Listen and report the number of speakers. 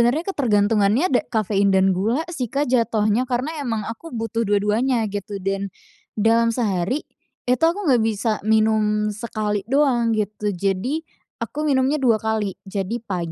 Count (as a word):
one